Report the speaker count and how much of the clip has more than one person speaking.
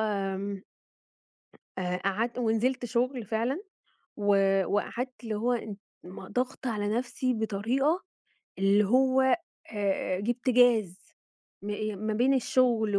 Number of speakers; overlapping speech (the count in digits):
1, no overlap